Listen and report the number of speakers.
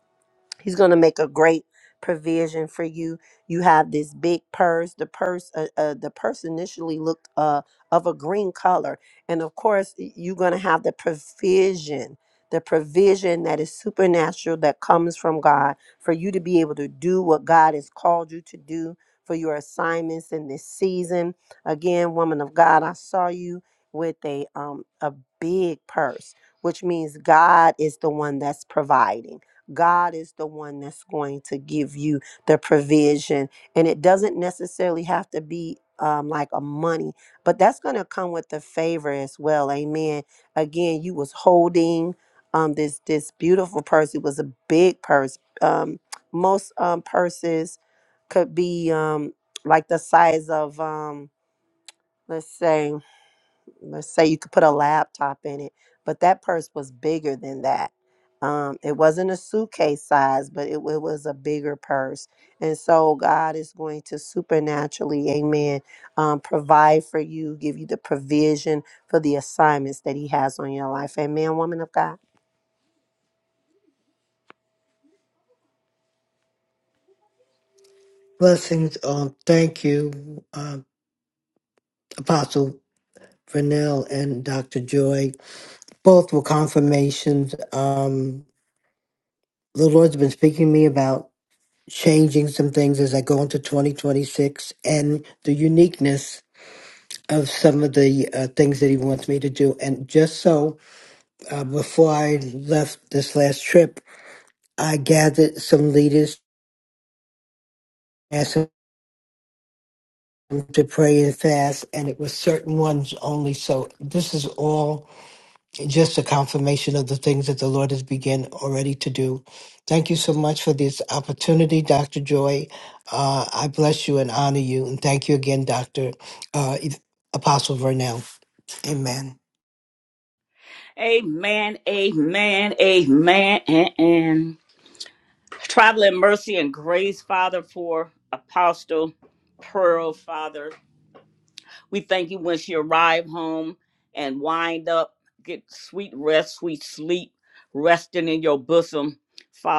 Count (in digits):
3